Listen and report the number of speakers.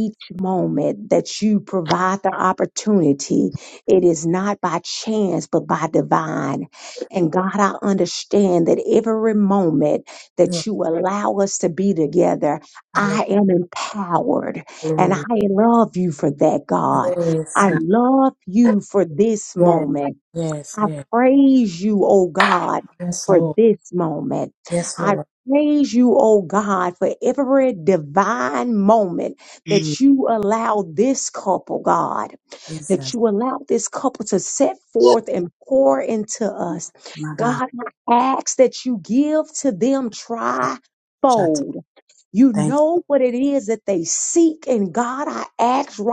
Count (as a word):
two